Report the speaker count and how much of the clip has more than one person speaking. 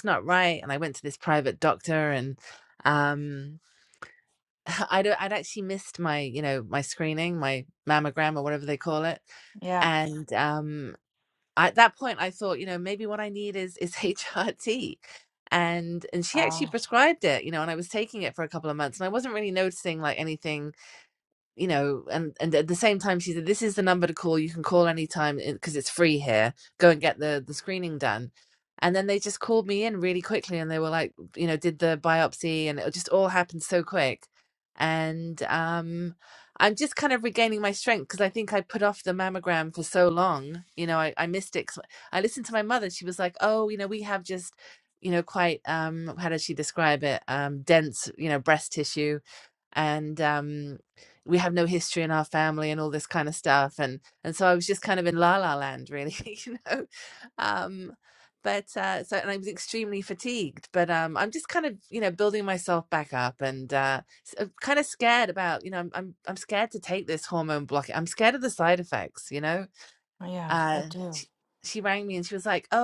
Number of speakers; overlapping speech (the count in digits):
2, about 1%